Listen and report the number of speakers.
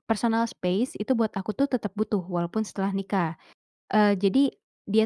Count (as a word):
one